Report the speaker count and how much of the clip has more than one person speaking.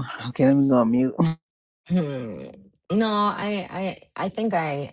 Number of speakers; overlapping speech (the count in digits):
2, no overlap